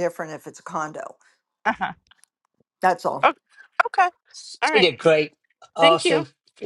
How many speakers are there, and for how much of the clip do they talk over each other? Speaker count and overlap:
3, about 9%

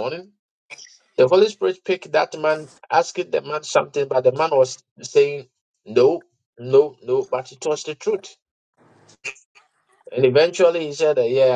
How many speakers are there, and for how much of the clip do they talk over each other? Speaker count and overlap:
1, no overlap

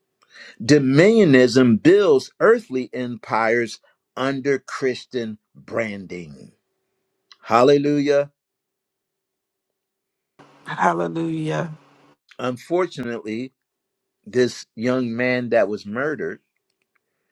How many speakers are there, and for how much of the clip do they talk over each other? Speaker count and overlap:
2, no overlap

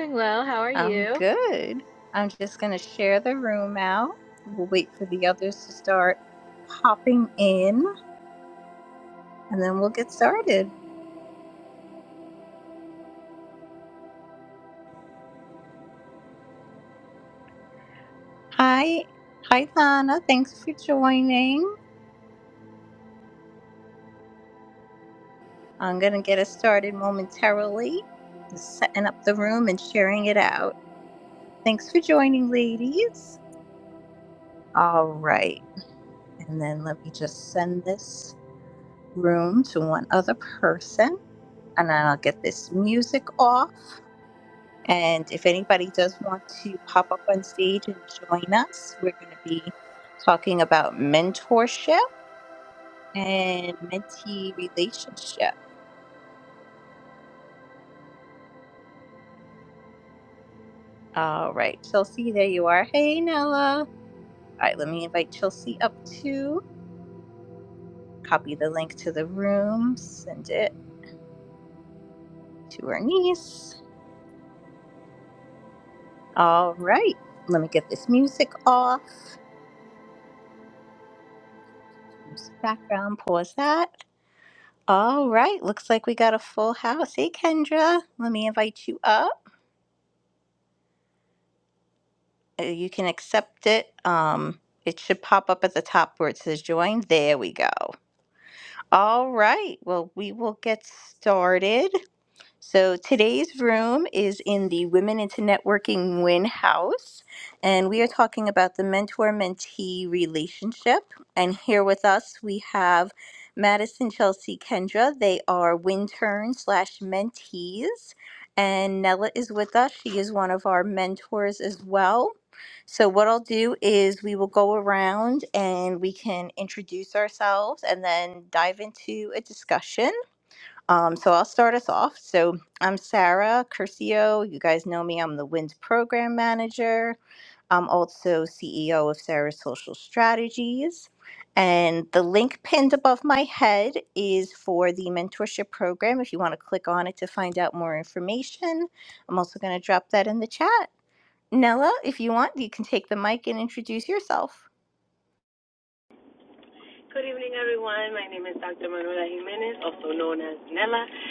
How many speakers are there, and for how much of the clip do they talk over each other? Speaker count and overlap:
3, under 1%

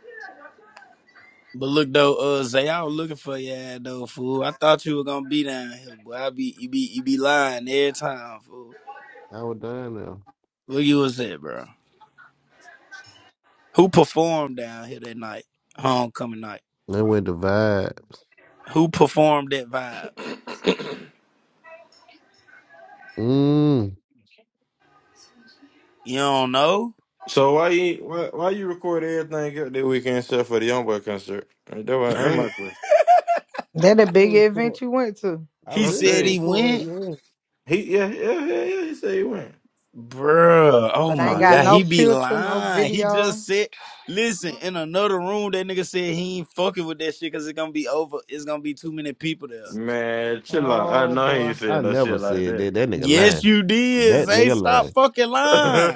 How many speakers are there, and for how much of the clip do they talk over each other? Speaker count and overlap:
4, about 14%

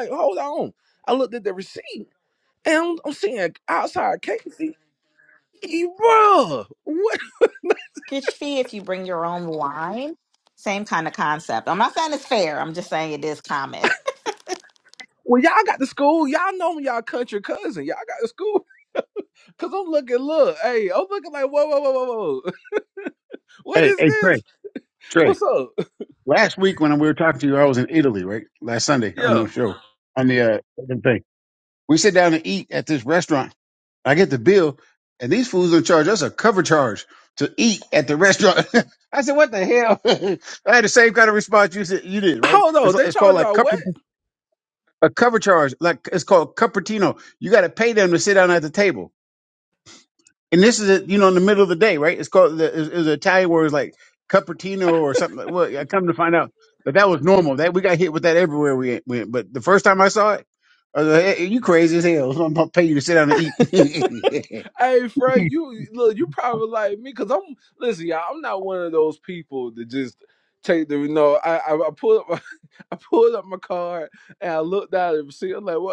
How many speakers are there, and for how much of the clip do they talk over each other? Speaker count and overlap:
3, about 3%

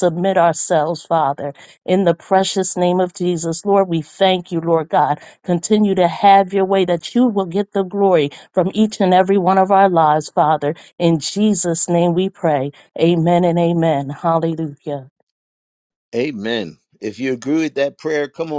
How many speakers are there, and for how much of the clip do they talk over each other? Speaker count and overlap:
2, no overlap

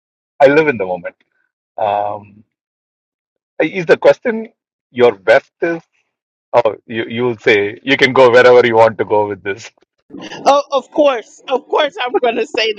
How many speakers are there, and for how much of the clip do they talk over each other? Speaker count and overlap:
2, no overlap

